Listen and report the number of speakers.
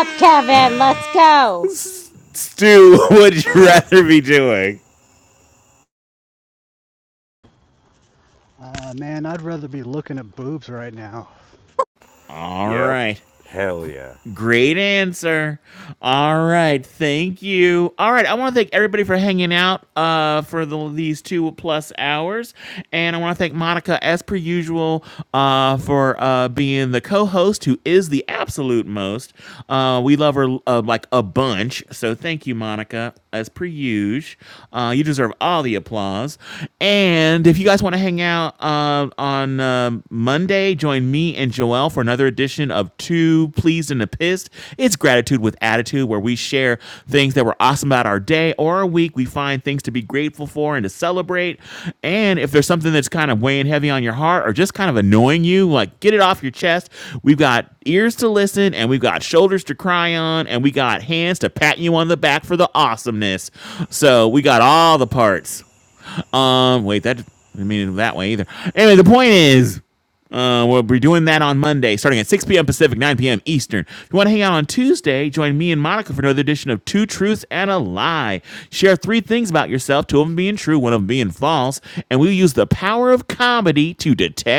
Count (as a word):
four